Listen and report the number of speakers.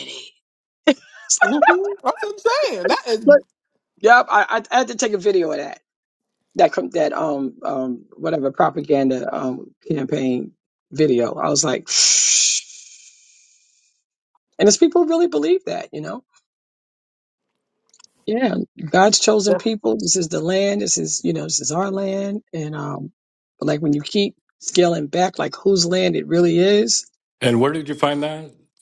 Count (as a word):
three